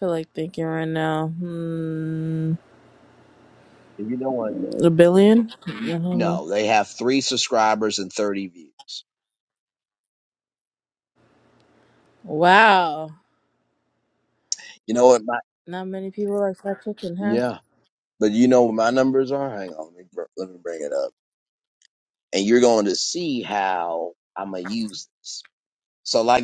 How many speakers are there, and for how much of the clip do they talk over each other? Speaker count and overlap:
two, about 3%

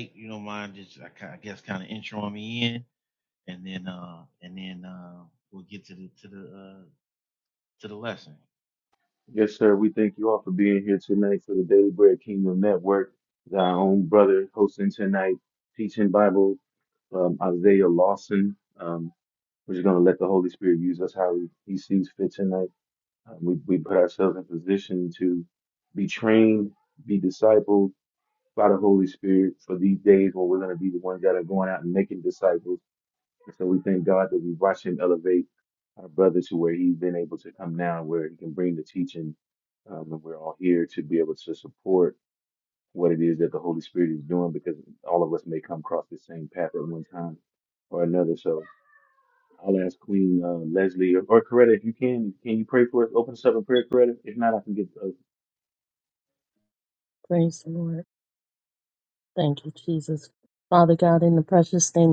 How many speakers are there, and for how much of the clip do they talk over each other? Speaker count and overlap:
three, no overlap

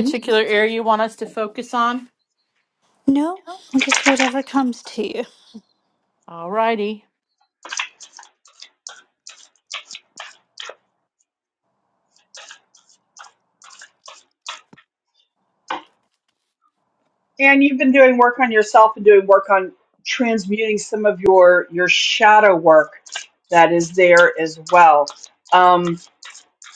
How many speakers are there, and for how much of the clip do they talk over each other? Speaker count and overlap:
three, about 1%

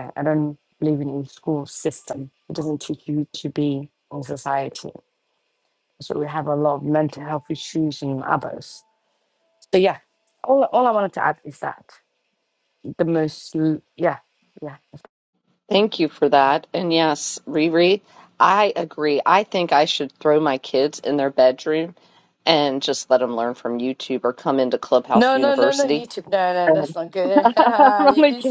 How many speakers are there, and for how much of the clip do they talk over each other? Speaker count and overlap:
two, about 6%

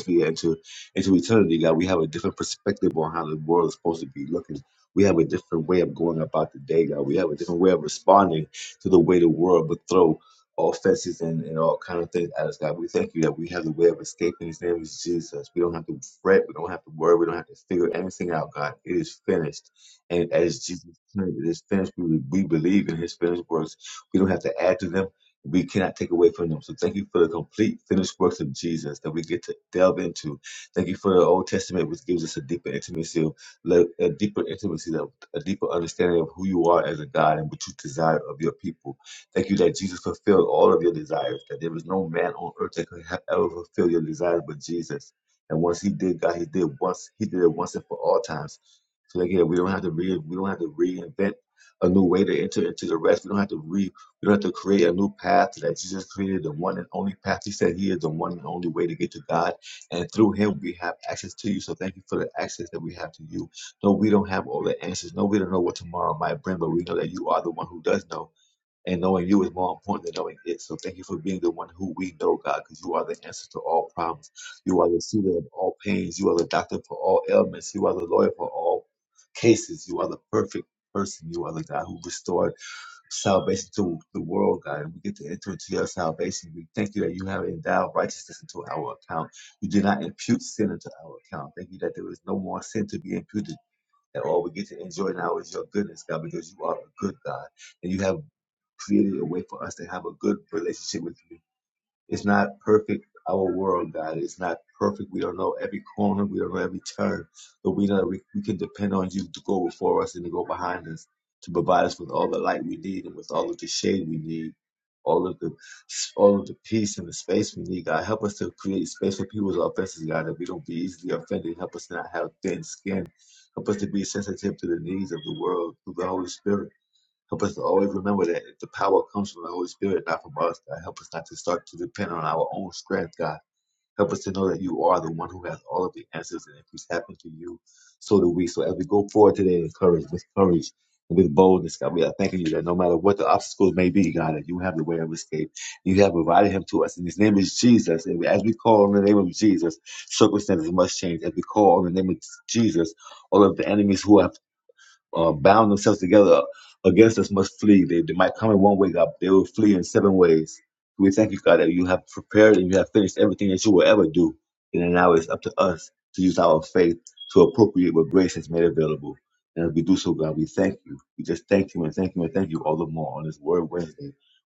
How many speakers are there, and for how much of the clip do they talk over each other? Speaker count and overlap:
one, no overlap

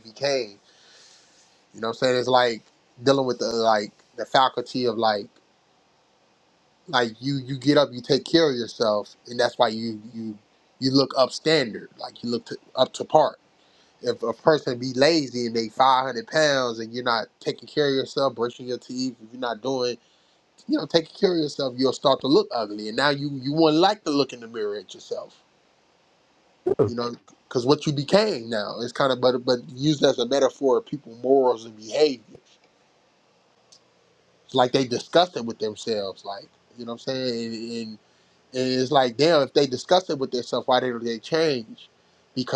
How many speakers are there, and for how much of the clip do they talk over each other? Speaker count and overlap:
one, no overlap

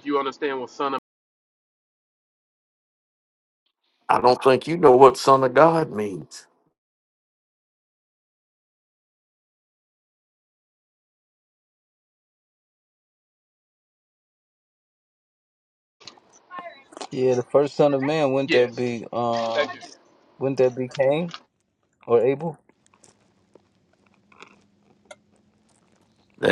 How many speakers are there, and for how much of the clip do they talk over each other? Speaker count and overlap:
three, about 2%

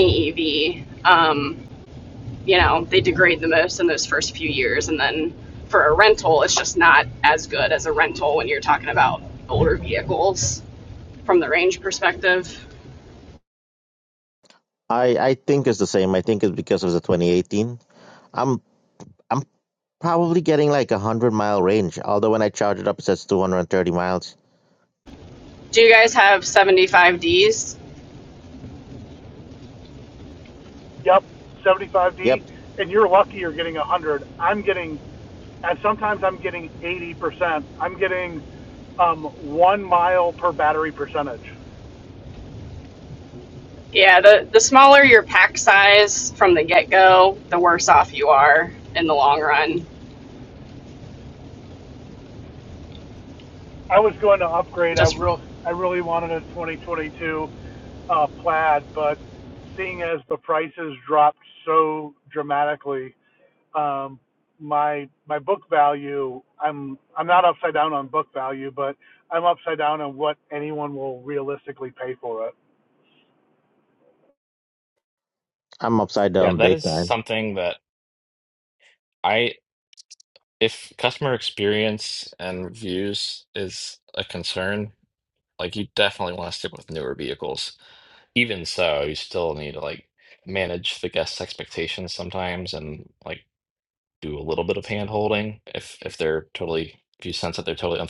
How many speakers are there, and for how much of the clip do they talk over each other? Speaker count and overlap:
four, about 1%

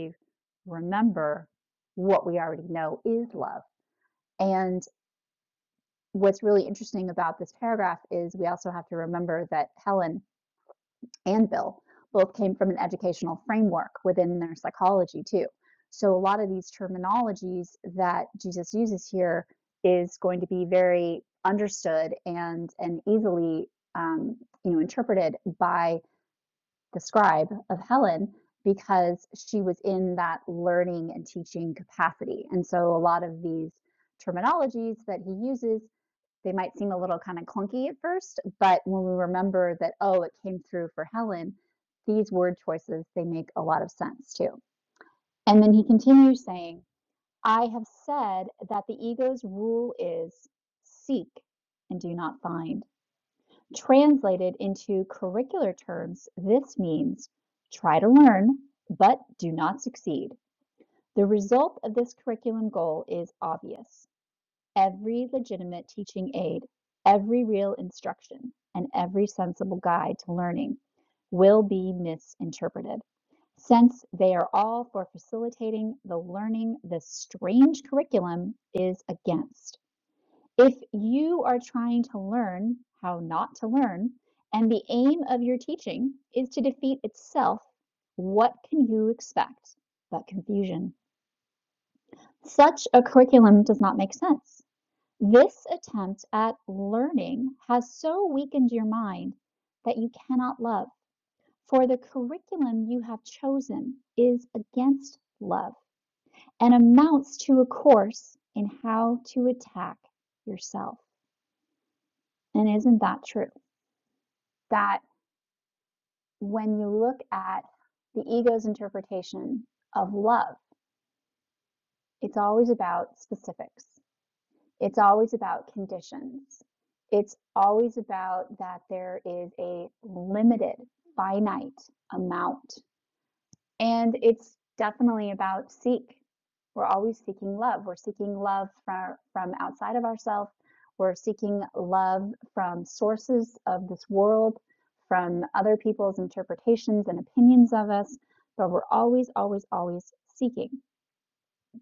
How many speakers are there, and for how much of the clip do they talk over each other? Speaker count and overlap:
one, no overlap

